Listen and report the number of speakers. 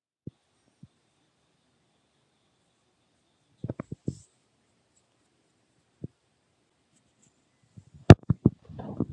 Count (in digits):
0